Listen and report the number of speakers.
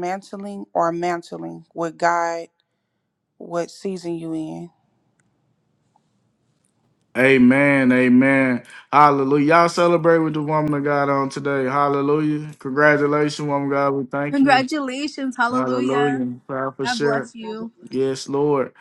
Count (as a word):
three